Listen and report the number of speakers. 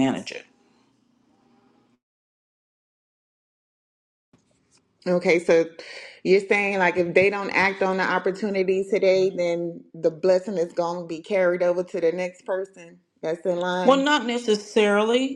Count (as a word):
two